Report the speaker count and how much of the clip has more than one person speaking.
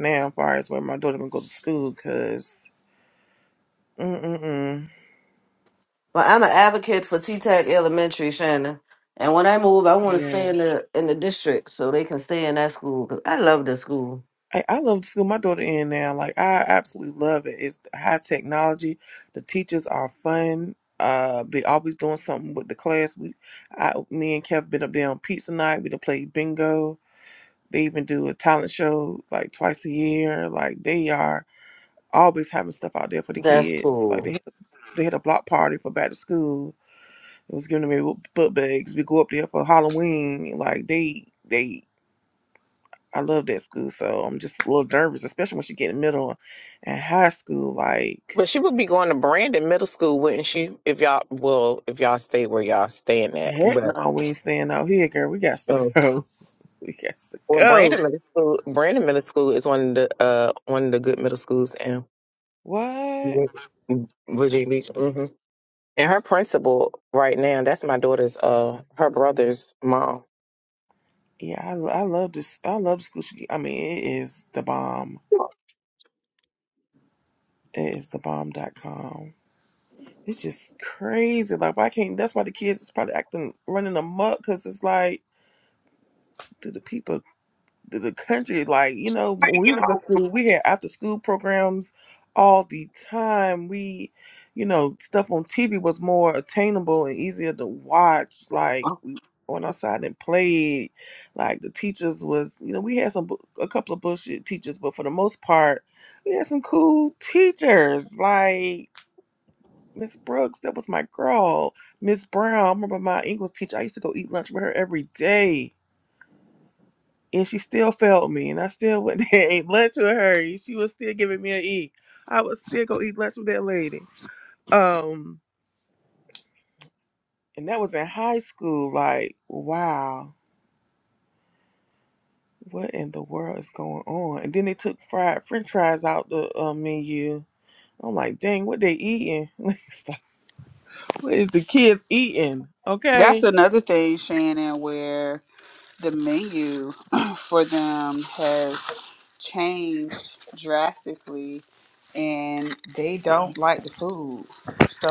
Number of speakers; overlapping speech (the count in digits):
4, about 2%